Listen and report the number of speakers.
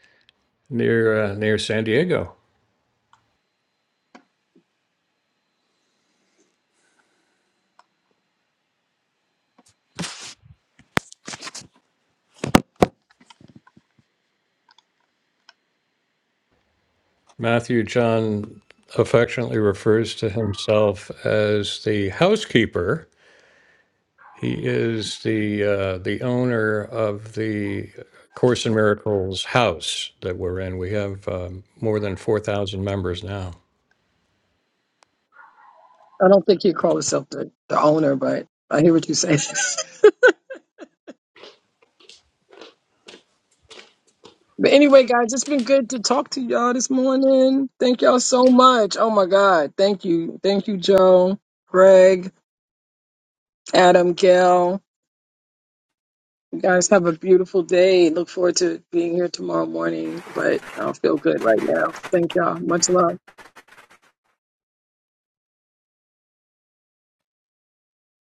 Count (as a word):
two